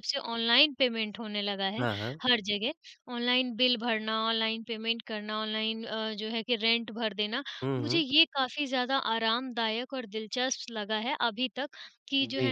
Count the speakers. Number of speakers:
2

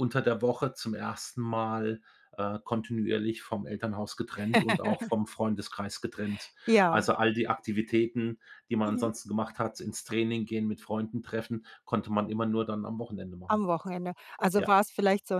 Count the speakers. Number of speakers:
2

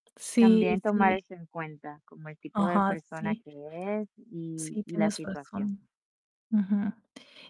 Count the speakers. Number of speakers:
2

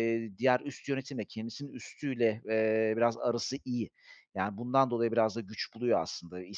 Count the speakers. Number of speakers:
1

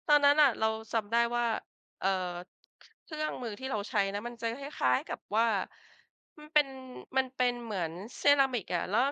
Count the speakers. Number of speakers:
1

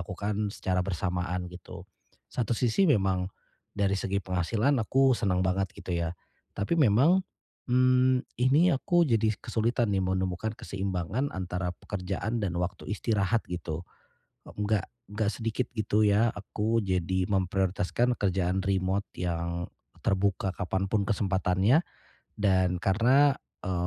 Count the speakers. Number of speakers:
1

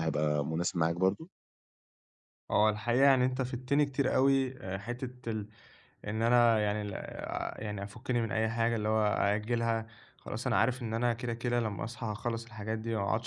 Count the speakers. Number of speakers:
2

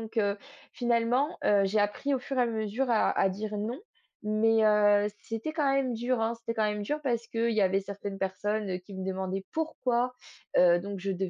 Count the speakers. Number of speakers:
1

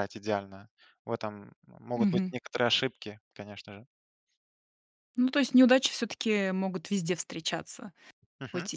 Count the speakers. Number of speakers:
2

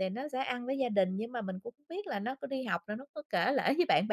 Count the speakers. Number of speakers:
1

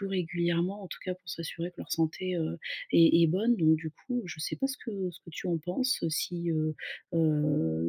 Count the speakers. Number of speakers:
1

